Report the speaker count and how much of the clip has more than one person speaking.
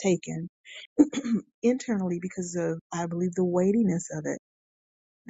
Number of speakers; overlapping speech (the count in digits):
1, no overlap